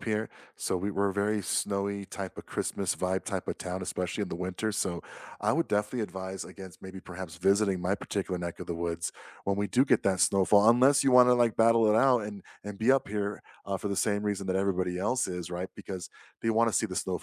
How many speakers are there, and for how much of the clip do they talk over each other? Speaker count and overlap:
1, no overlap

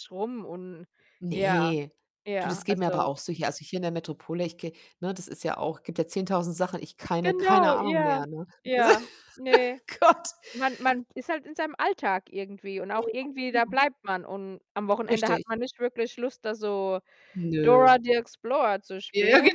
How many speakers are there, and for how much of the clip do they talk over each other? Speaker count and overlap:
2, about 18%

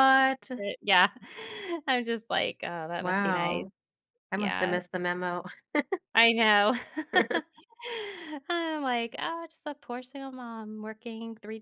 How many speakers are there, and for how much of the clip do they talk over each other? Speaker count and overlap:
2, about 9%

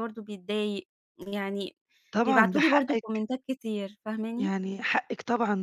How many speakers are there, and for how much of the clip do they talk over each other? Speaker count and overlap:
2, about 19%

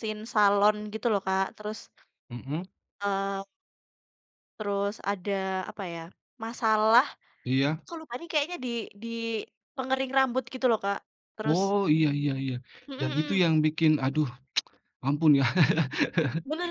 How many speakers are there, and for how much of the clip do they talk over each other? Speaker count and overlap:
2, about 3%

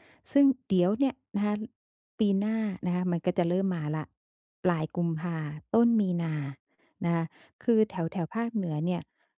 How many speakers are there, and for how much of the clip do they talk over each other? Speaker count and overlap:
1, no overlap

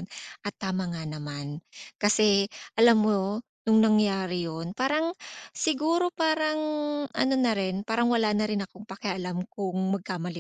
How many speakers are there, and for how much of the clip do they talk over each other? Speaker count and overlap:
1, no overlap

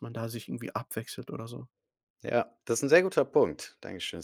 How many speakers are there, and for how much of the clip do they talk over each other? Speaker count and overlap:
2, no overlap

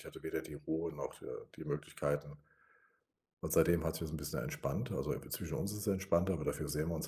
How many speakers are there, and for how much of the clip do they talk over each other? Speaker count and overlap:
1, no overlap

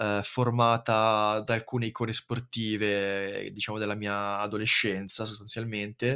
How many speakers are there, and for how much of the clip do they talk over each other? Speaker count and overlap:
1, no overlap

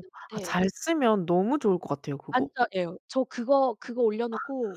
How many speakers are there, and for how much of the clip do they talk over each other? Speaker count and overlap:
2, about 15%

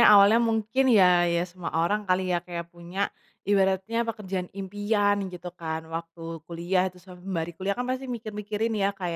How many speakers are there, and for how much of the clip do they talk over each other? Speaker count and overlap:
1, no overlap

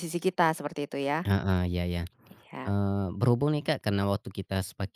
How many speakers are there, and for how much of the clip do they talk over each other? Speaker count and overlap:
2, about 2%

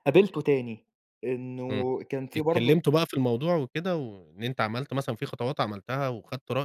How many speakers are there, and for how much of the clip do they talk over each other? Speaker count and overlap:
2, about 9%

